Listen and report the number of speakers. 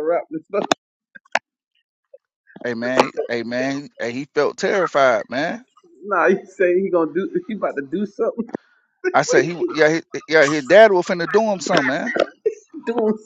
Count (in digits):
2